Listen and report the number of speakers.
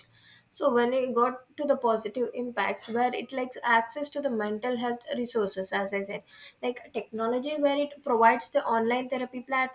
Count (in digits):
1